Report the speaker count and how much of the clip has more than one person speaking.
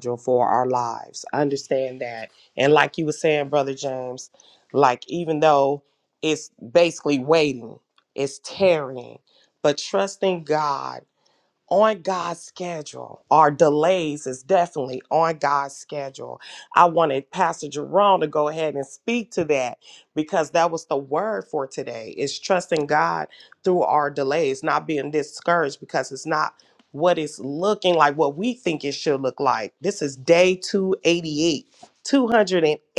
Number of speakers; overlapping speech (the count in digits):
1, no overlap